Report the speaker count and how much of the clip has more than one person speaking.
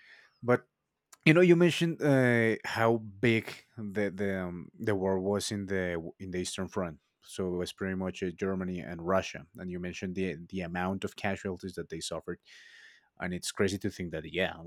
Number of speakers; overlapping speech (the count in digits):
1, no overlap